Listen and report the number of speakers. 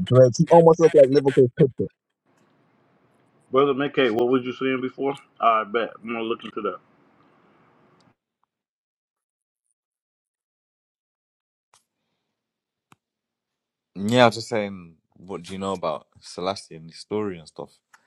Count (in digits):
3